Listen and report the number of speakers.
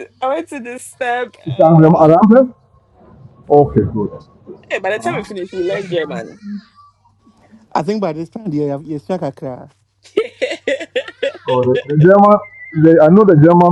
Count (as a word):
three